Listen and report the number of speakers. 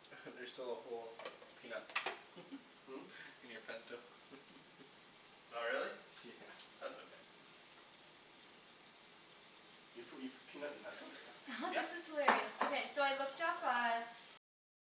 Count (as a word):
four